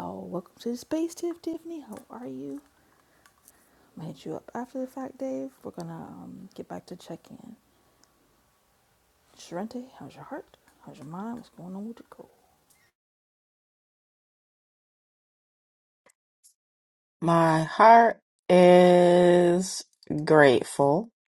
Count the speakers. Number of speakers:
2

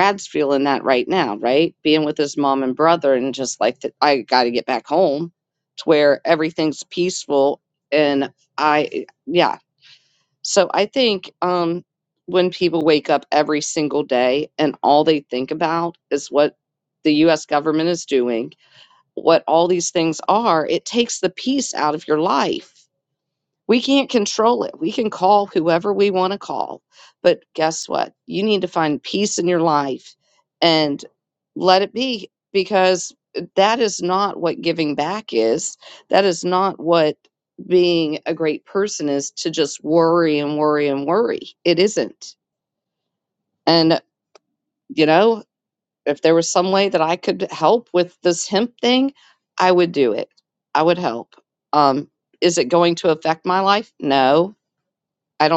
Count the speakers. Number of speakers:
1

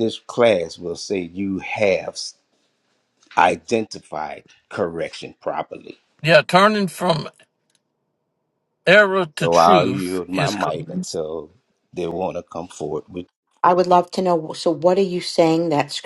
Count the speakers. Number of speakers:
3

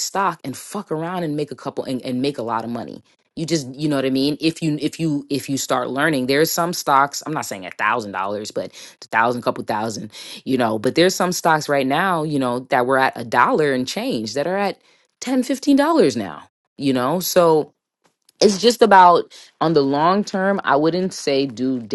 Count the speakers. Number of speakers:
1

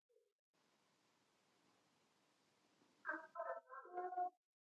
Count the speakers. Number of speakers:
0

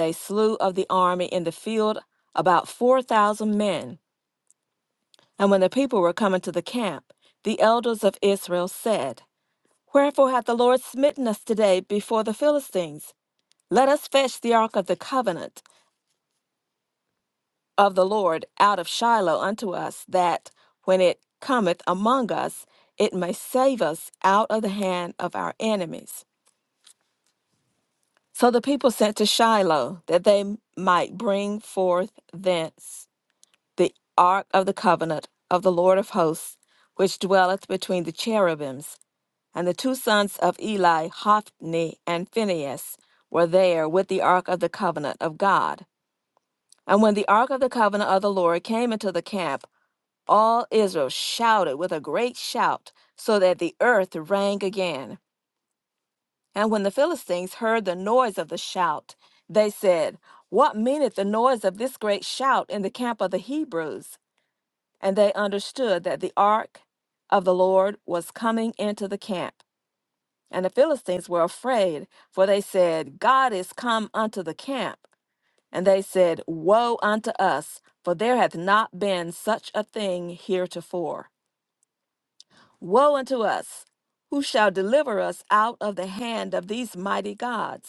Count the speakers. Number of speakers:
1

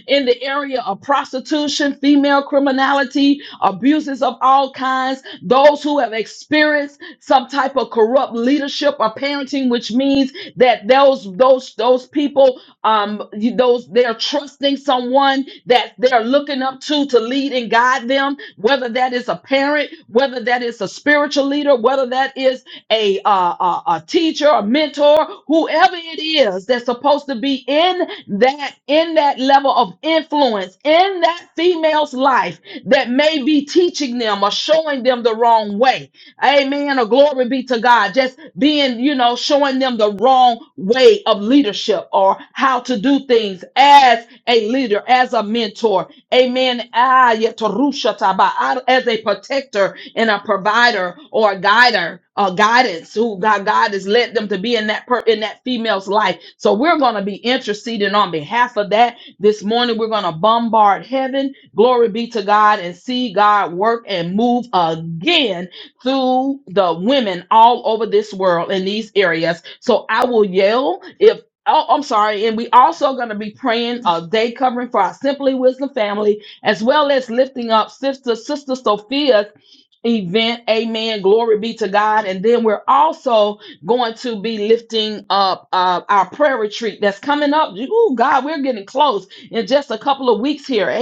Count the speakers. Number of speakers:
1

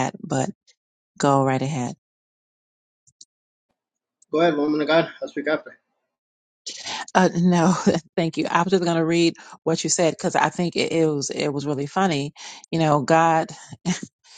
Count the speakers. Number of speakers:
2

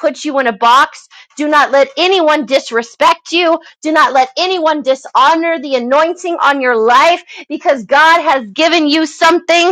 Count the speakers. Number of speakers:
1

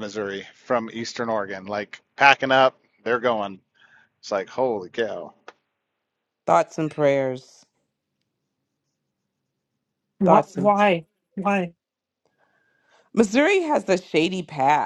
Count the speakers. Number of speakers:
3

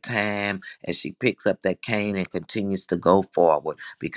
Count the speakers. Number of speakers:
1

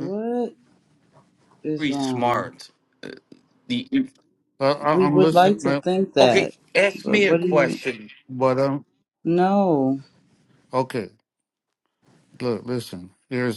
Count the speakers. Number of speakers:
3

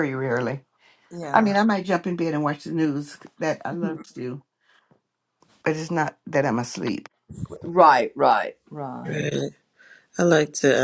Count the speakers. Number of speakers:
3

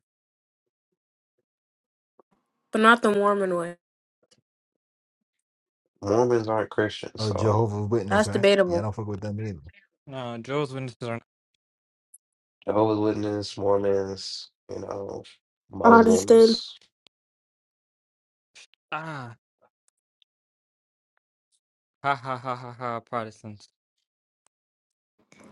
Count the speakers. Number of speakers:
4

